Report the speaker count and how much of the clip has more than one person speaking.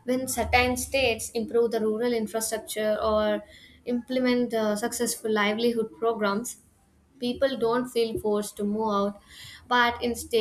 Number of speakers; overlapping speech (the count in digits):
1, no overlap